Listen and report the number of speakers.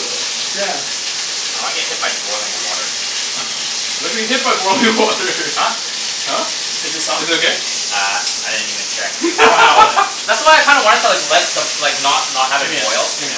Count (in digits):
3